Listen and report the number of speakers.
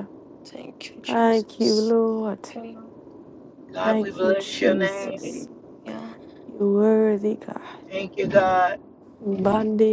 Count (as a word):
three